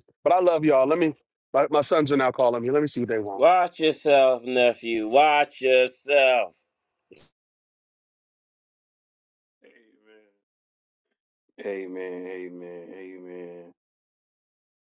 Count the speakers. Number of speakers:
three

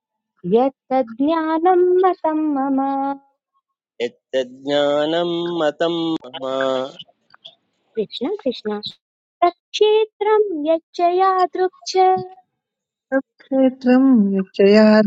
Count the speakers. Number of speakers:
three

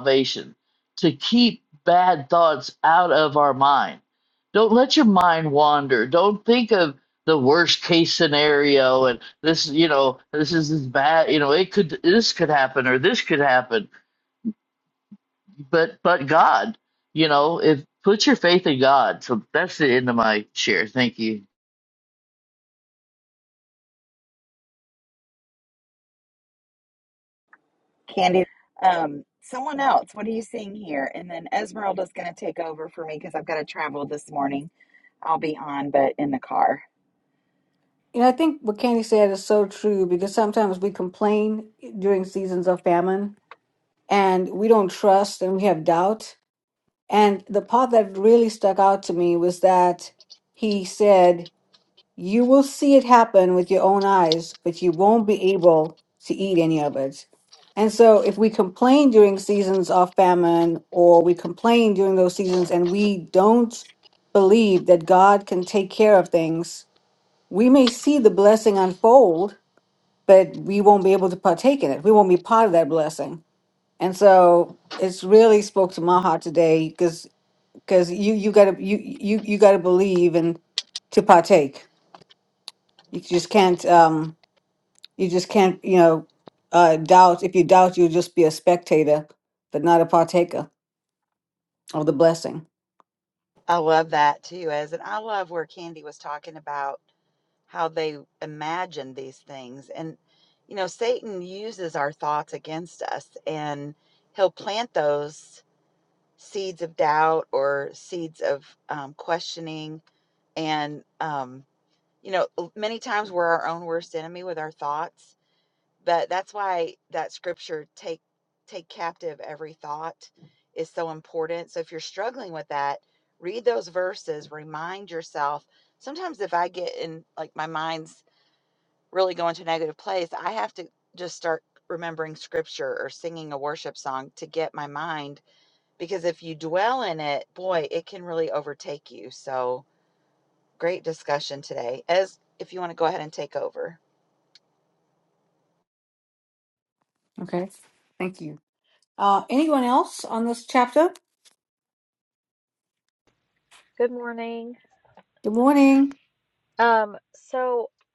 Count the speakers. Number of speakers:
four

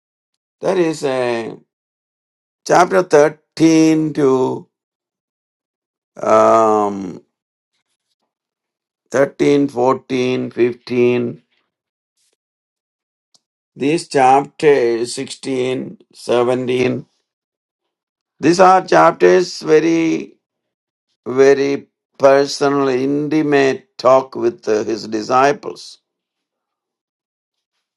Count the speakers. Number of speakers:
one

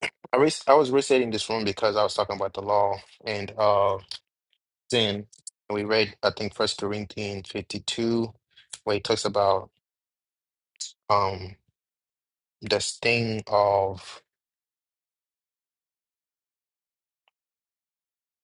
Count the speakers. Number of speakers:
one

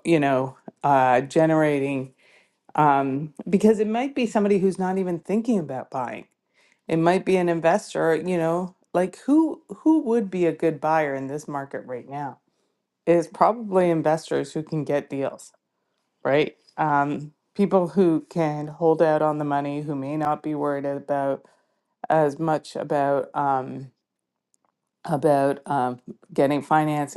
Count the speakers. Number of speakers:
one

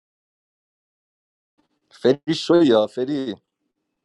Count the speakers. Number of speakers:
one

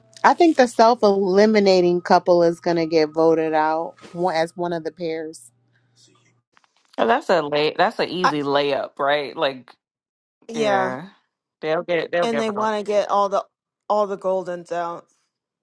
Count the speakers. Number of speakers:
three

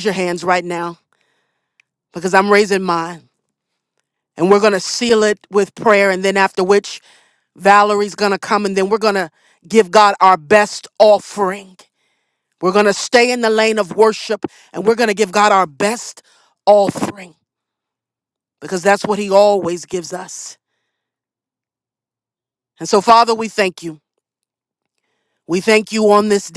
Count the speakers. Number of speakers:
one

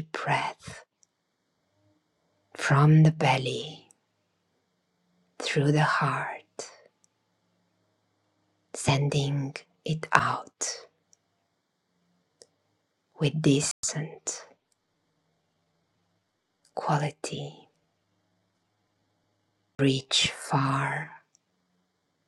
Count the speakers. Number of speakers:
one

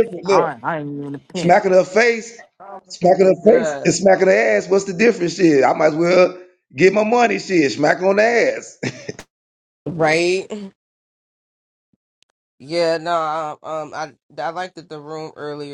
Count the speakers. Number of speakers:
three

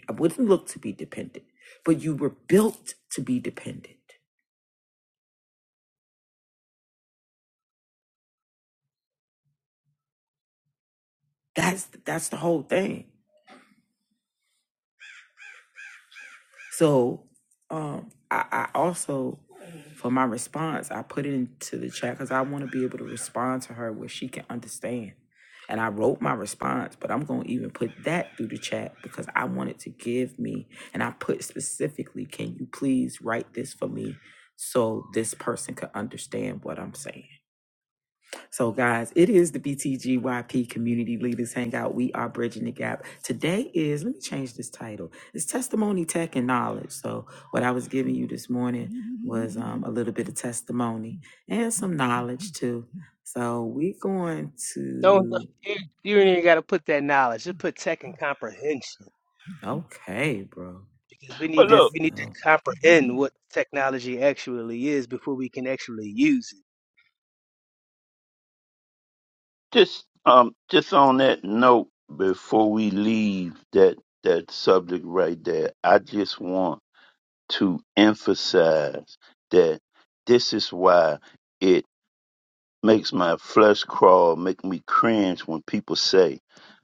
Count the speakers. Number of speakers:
three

